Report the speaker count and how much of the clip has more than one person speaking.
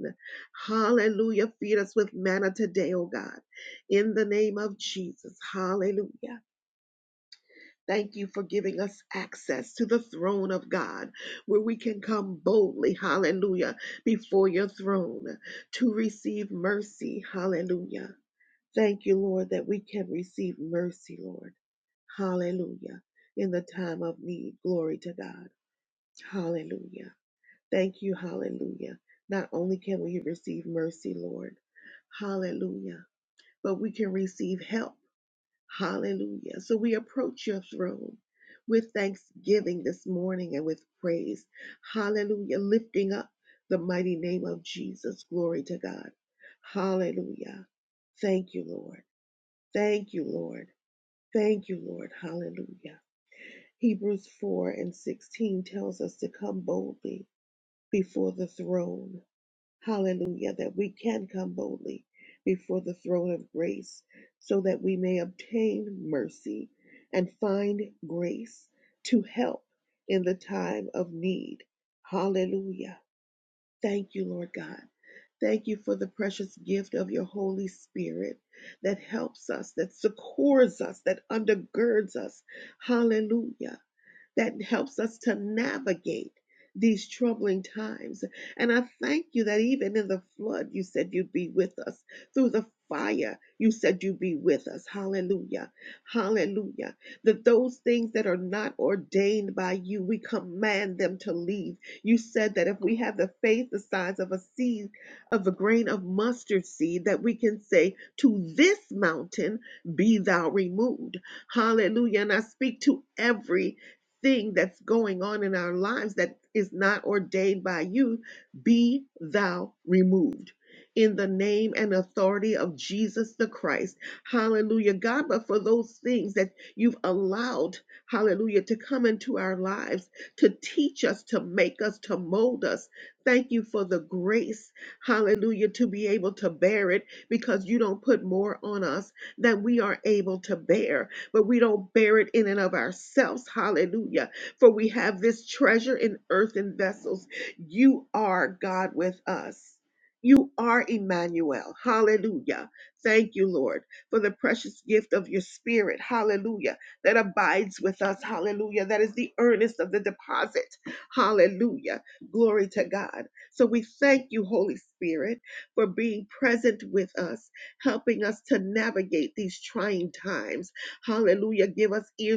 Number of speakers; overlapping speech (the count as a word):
one, no overlap